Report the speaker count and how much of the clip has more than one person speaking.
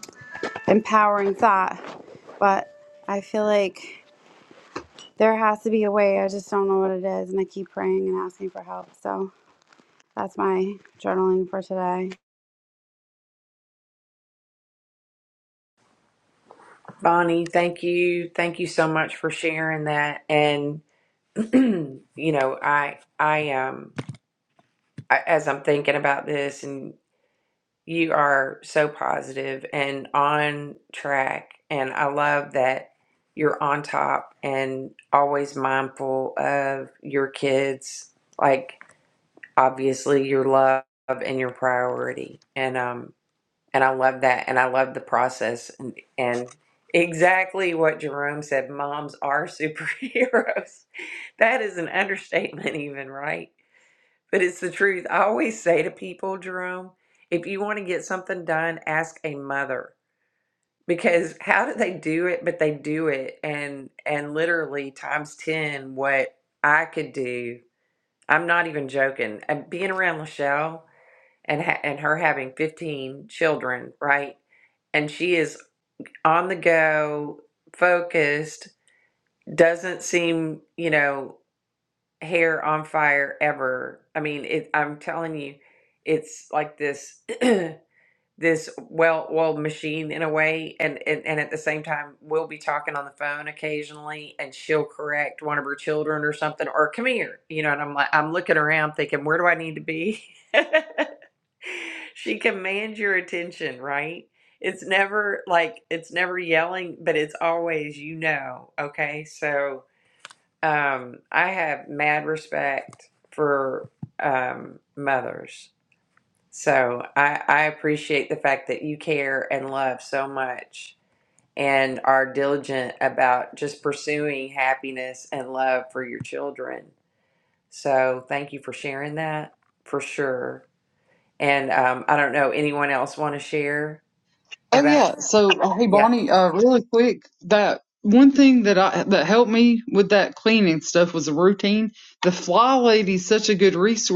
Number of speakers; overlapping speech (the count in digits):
3, under 1%